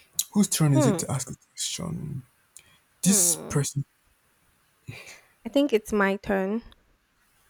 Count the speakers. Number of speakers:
2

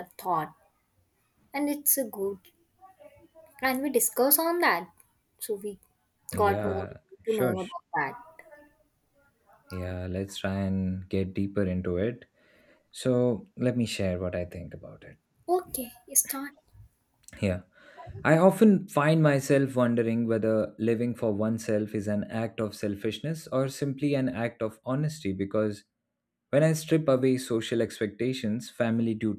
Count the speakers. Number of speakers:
2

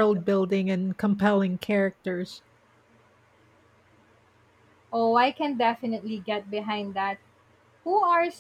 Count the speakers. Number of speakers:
2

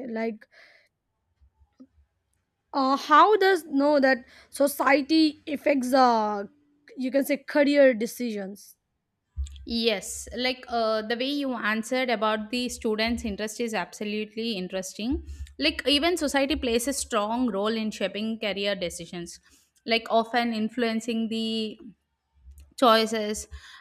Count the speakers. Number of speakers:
2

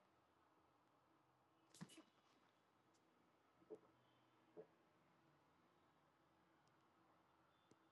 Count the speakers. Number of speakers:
0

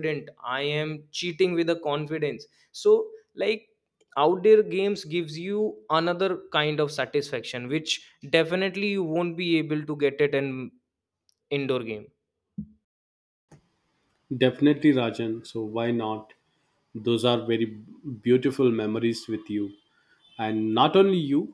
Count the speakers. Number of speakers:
2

